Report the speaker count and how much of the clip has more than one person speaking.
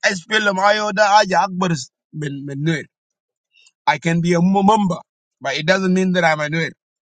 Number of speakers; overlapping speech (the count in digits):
1, no overlap